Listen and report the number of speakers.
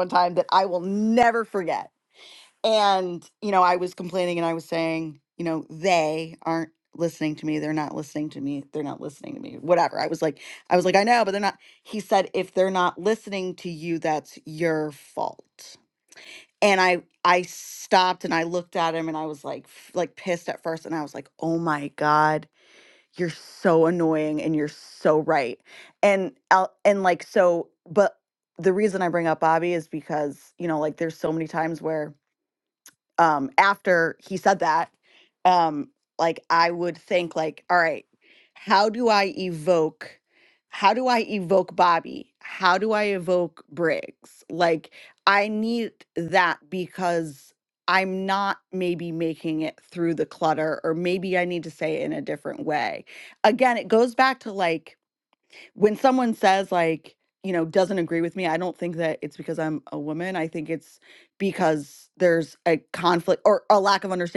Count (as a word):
one